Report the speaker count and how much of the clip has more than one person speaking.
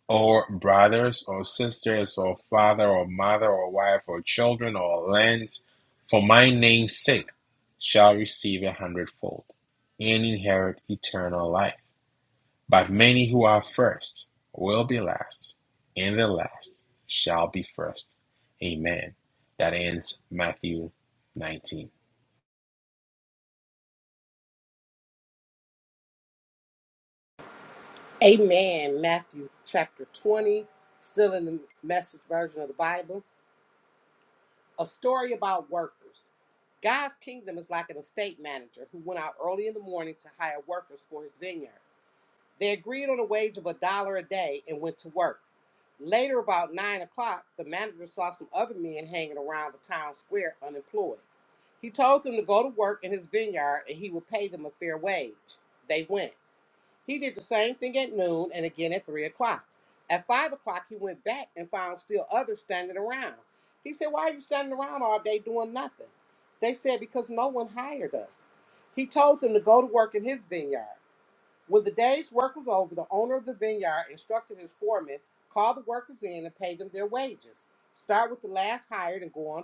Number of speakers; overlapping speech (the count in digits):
2, no overlap